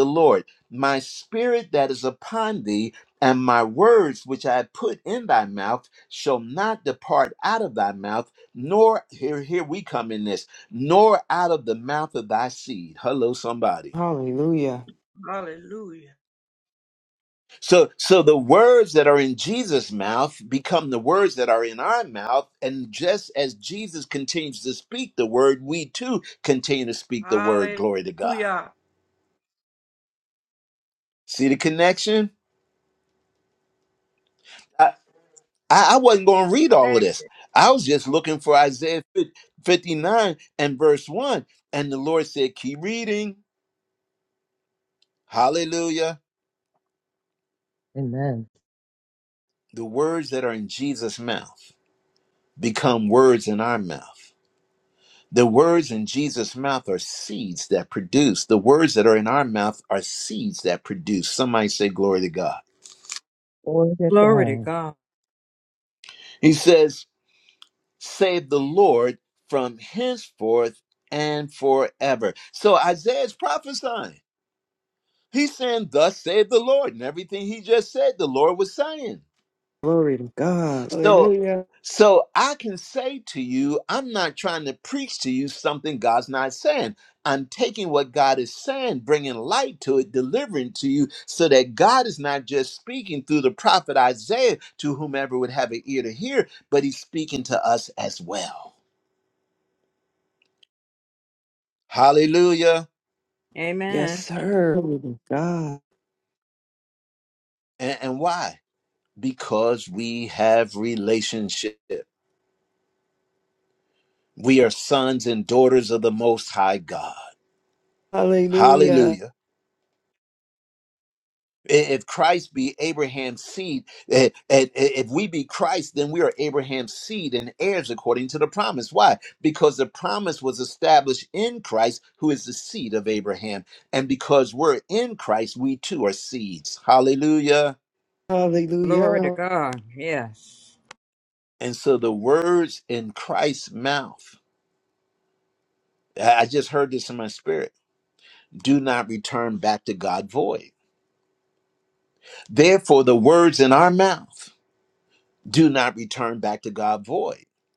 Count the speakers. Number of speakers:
5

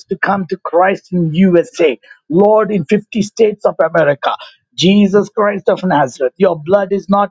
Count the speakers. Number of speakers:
1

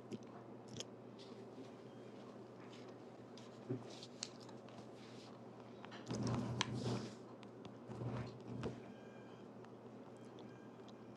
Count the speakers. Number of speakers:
0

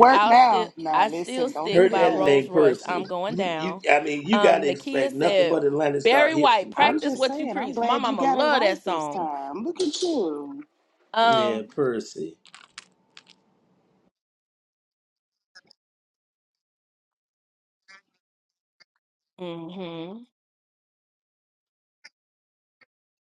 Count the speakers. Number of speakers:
3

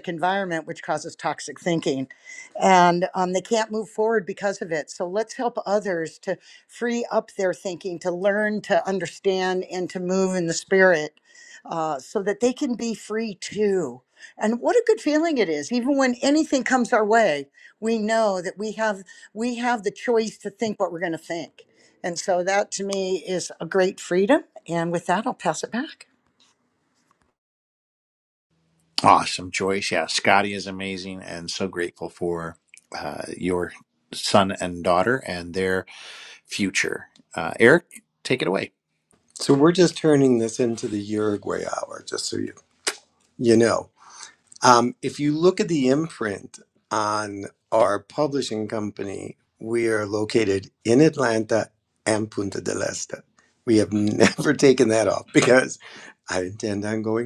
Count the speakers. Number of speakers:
3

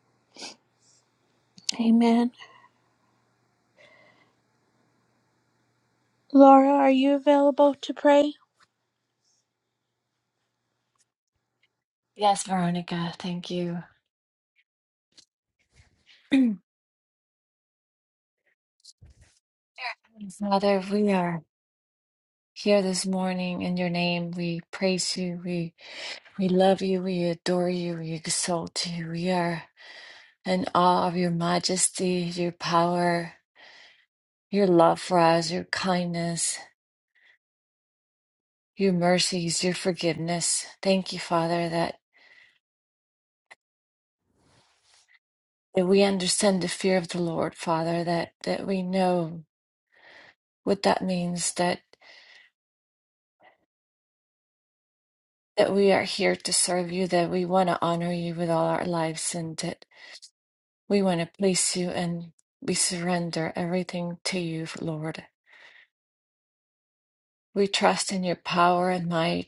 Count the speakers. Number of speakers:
2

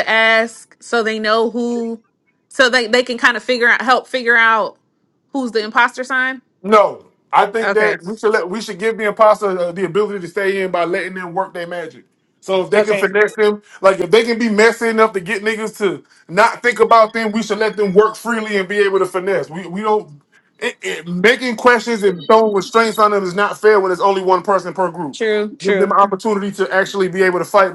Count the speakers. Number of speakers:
2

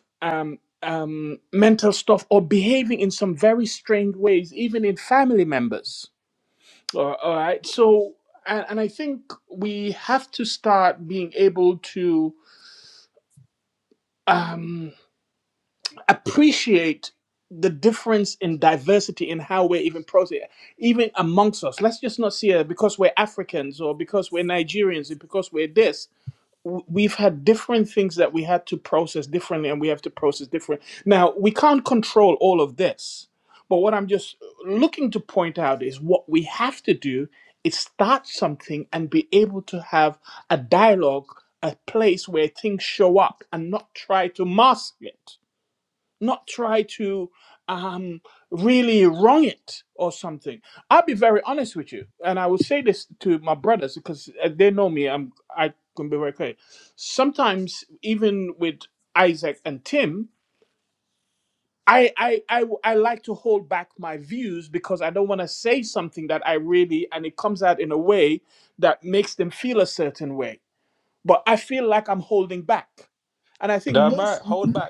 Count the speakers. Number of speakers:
2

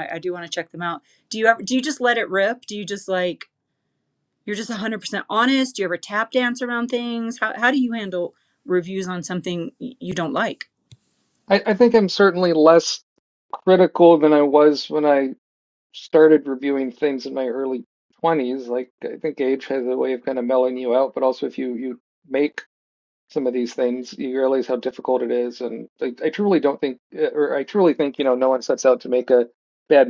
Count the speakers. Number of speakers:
2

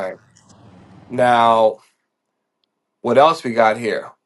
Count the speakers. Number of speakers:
1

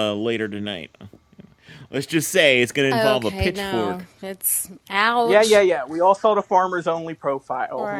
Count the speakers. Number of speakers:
3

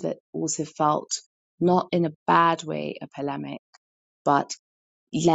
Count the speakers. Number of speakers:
1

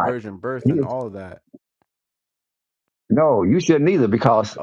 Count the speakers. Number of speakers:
2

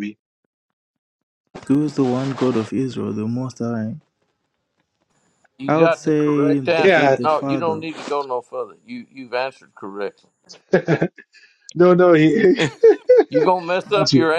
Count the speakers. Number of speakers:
3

